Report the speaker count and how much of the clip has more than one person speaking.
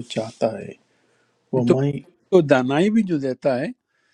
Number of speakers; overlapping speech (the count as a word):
two, about 5%